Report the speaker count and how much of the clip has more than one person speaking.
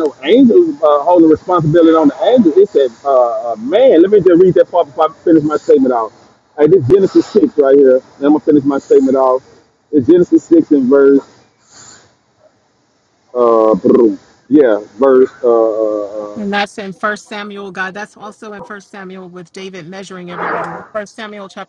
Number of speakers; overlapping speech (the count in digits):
2, under 1%